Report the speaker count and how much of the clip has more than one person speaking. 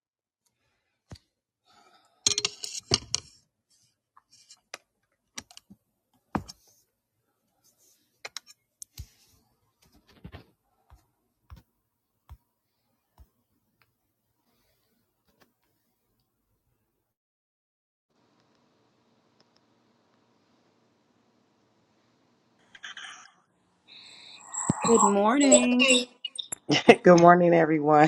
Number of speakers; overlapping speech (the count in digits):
2, no overlap